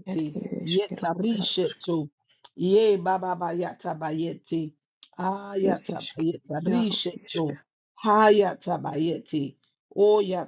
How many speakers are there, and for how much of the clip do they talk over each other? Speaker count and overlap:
two, about 25%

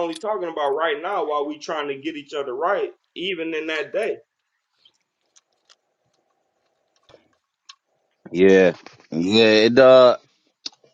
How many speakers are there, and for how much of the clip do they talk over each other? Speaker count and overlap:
two, no overlap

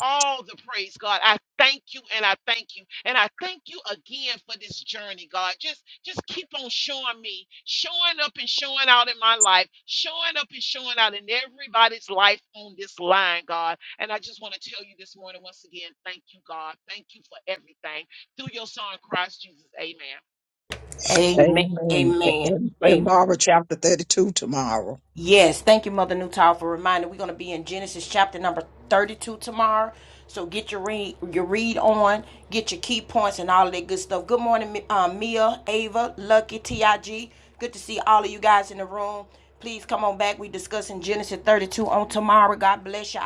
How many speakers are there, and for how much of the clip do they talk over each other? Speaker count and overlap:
three, about 4%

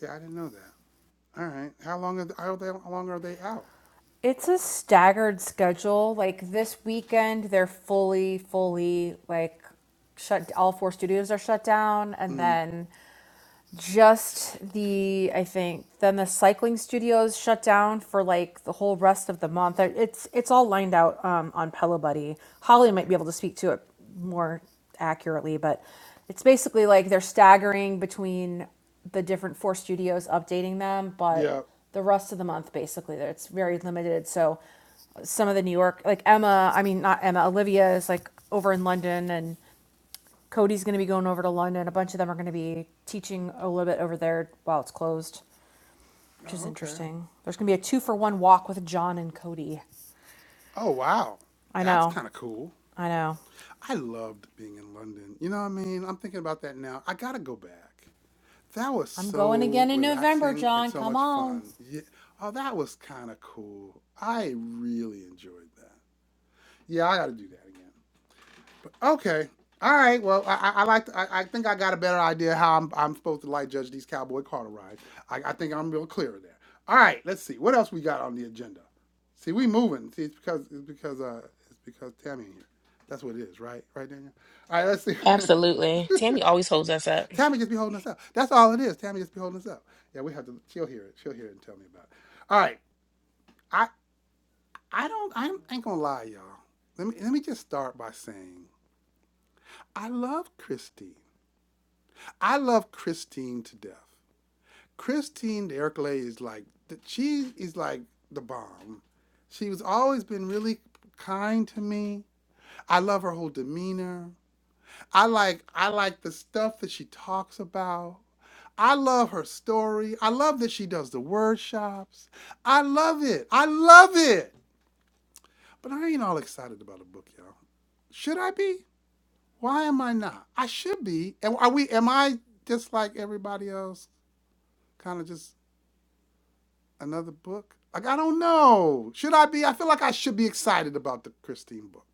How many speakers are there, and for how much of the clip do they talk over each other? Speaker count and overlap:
three, about 3%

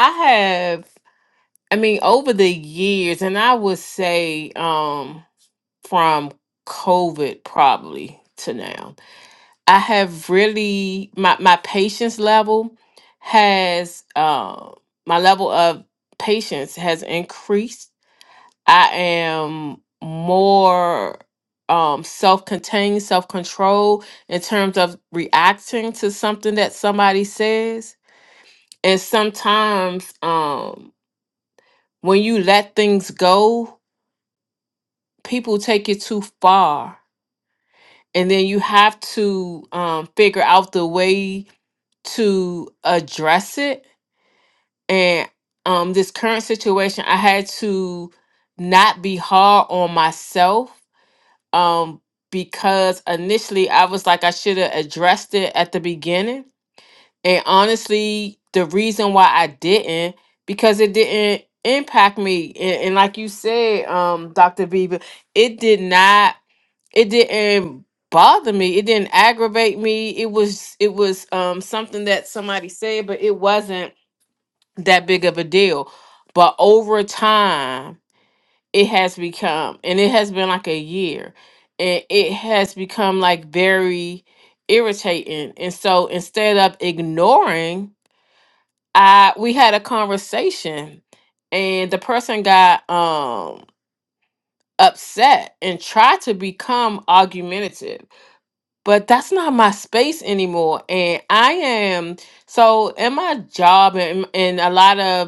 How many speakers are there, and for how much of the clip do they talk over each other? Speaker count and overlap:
one, no overlap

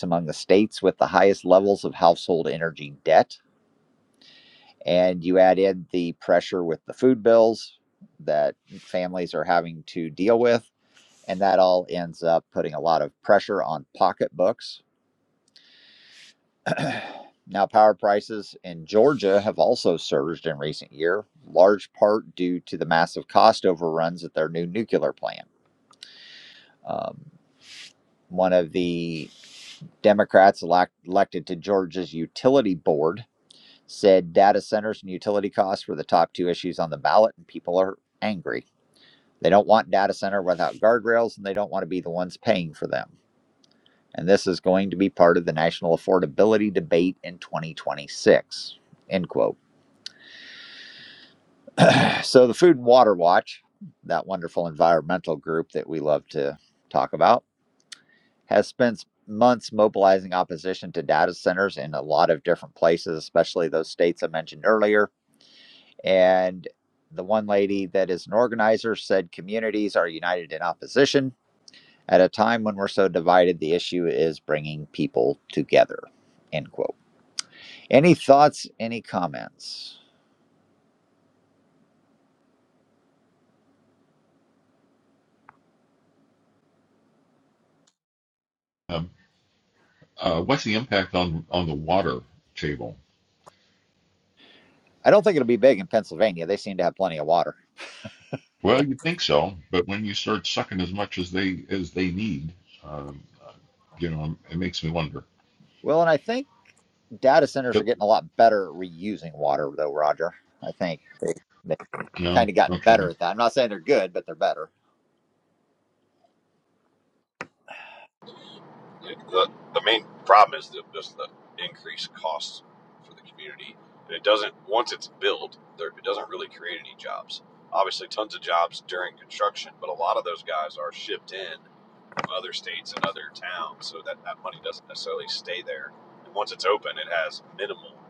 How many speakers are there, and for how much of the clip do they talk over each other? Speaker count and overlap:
three, about 1%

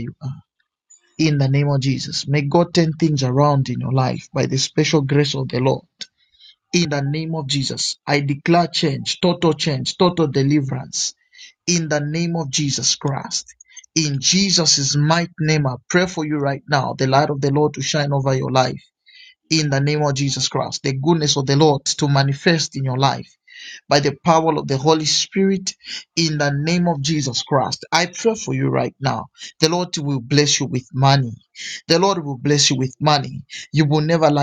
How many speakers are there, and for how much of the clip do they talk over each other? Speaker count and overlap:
one, no overlap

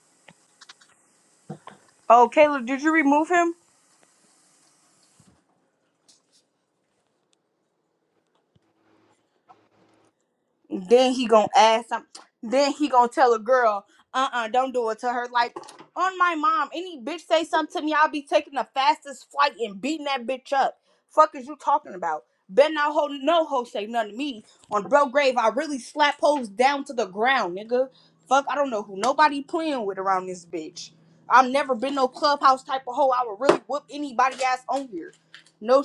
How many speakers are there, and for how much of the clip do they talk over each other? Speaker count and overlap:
one, no overlap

